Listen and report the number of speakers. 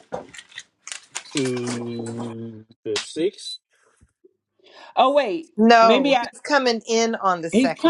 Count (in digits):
3